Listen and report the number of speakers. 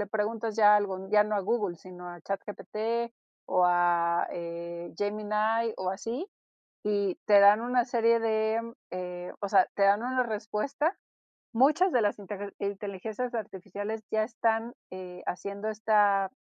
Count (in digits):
1